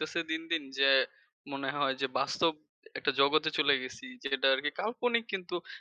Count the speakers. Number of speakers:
1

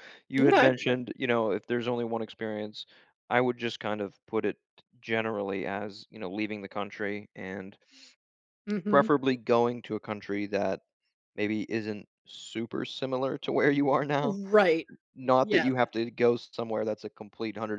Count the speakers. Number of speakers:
2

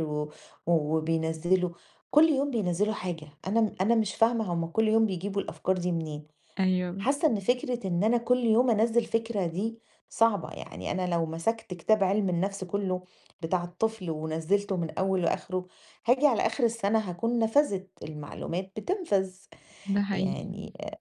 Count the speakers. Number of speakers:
2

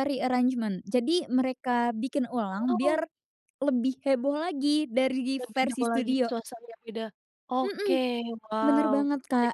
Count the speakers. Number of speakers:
2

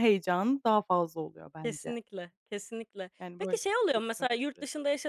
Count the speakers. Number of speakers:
2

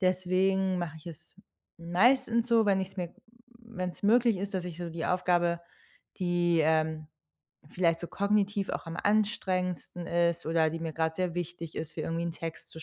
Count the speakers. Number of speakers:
1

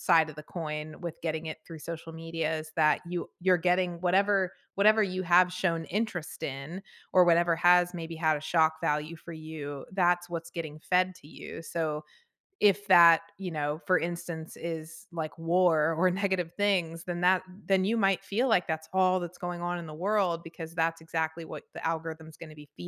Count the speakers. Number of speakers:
1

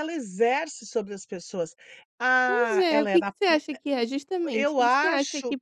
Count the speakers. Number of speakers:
2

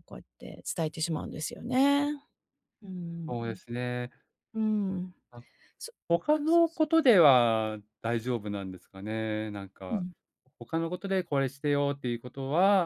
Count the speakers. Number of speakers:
2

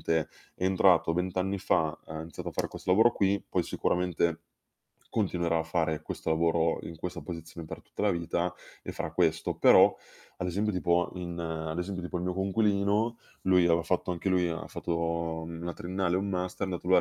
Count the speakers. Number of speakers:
1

